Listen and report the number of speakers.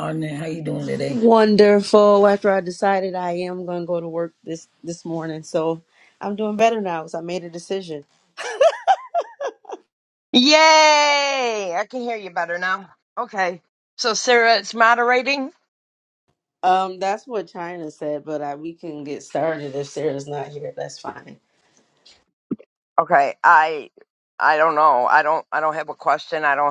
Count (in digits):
3